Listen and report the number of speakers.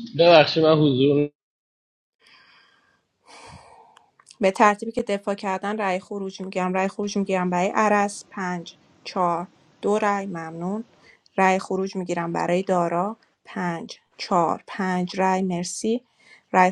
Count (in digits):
2